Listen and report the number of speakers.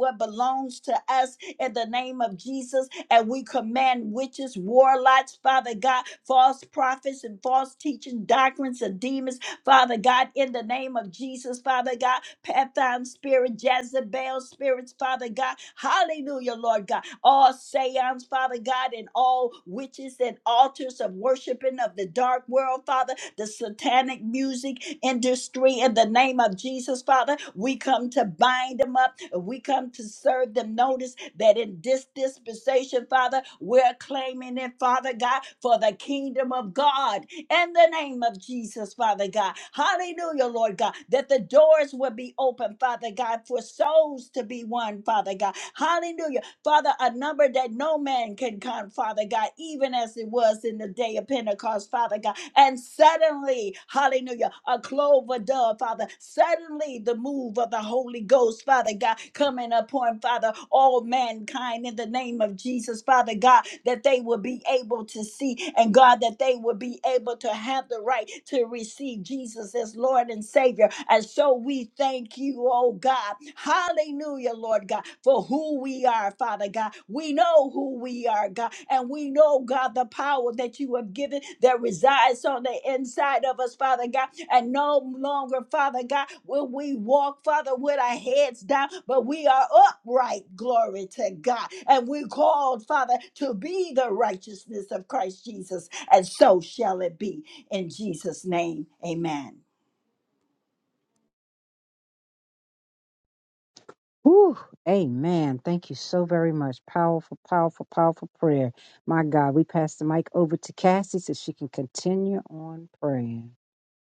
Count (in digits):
2